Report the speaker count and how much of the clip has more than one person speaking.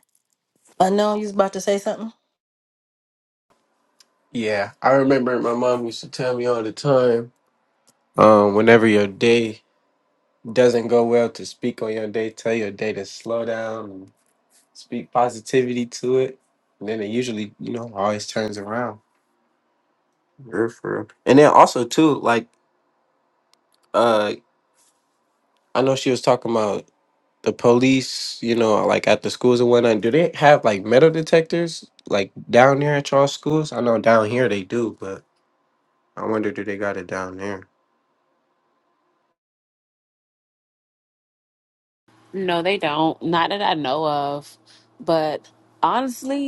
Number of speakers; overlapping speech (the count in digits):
3, no overlap